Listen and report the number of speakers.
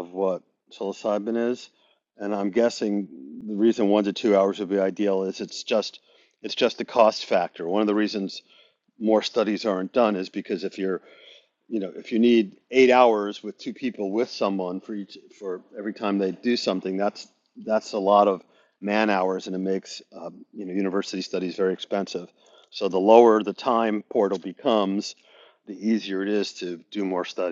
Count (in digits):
1